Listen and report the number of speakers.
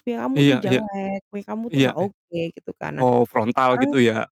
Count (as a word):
two